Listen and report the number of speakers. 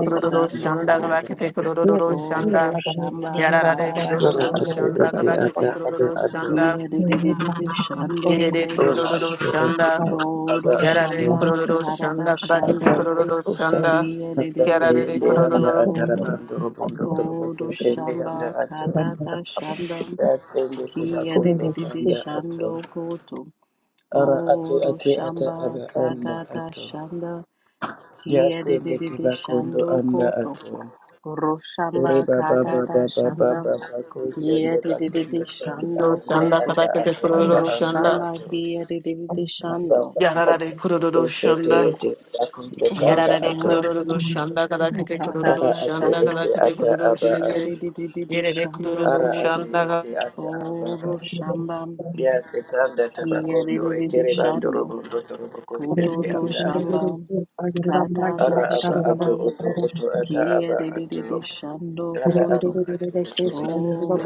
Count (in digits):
3